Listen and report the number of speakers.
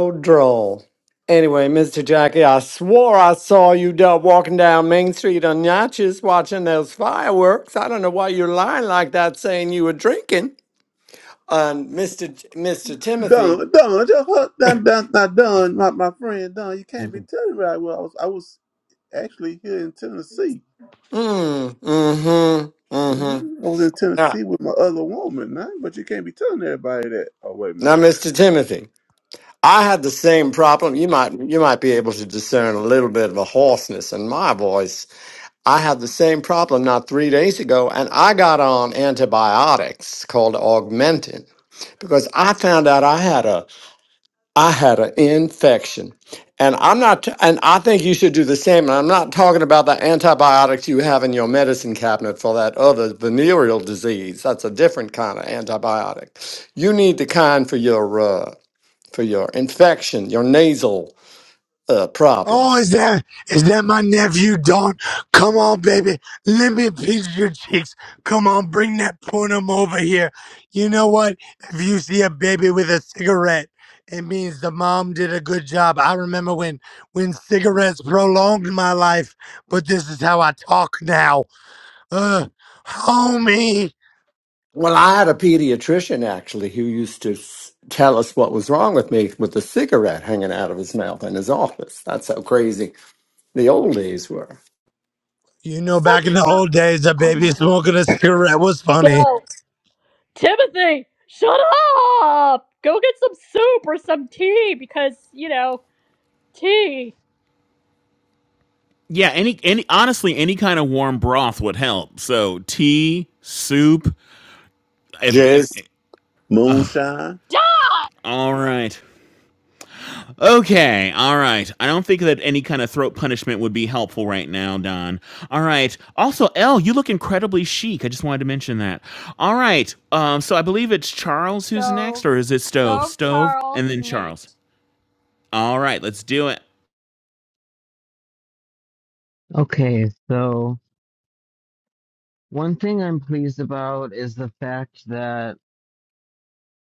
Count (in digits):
6